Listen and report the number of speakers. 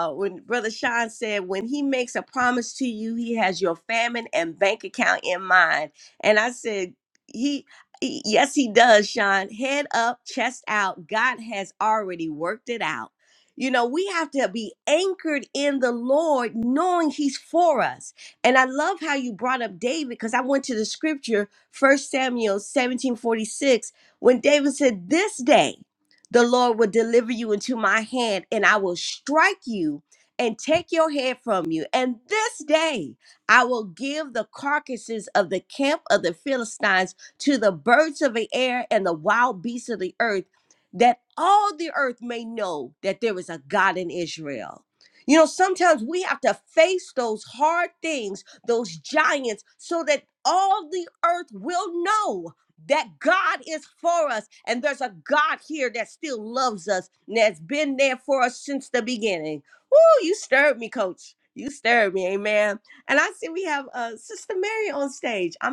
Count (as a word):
one